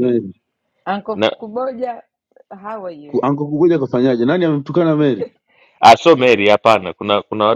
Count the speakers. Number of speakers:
3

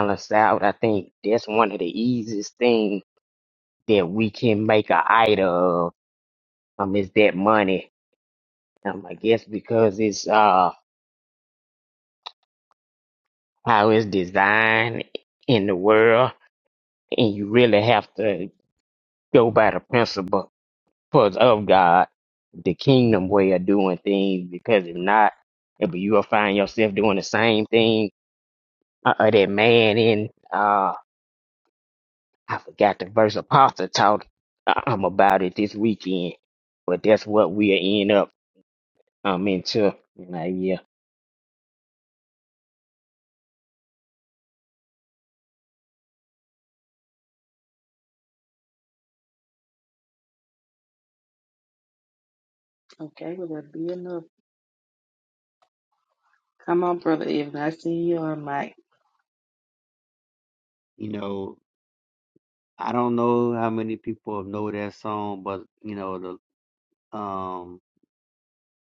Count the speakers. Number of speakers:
3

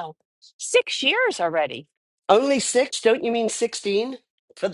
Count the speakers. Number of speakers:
2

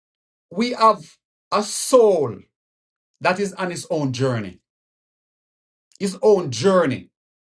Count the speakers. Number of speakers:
1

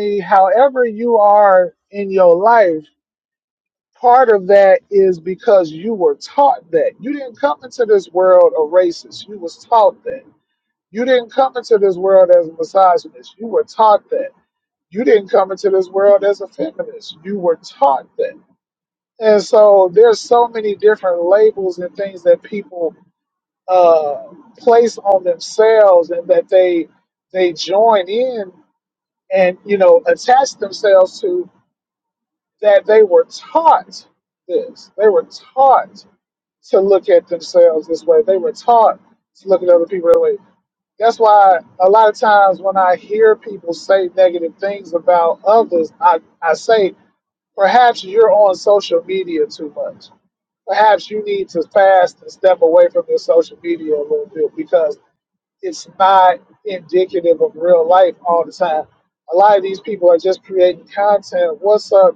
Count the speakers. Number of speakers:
1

